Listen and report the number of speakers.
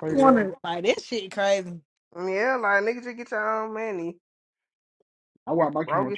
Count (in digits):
3